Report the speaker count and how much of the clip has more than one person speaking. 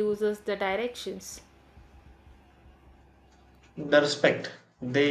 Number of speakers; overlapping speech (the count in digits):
2, no overlap